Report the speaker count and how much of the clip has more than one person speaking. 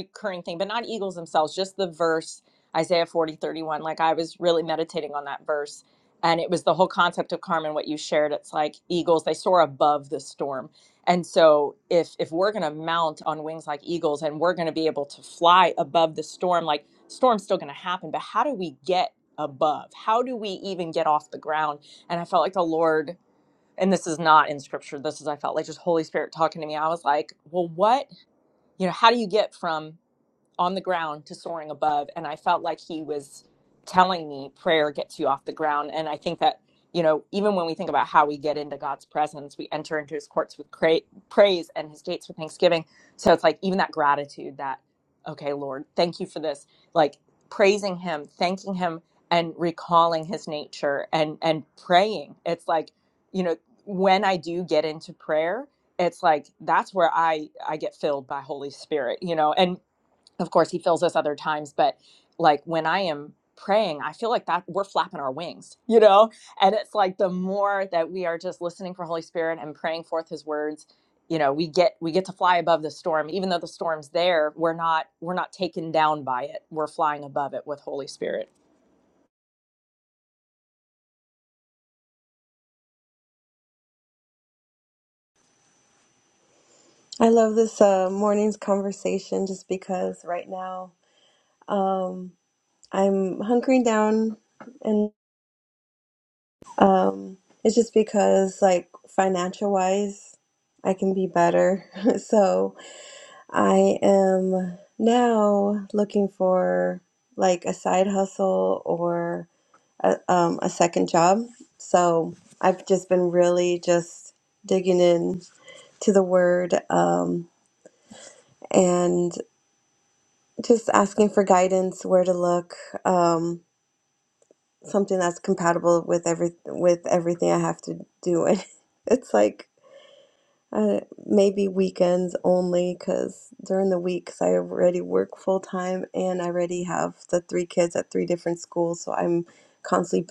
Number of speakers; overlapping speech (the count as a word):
two, no overlap